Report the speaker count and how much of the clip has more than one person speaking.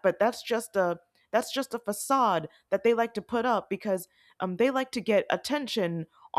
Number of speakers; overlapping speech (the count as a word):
one, no overlap